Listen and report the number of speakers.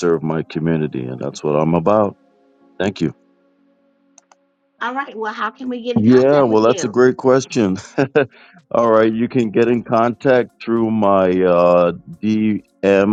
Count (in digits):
2